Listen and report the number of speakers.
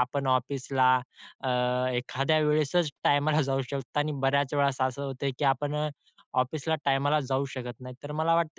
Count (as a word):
one